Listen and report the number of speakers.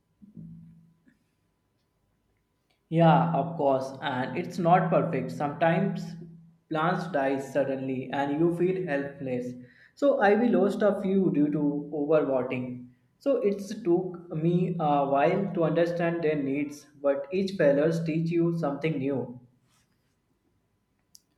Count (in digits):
1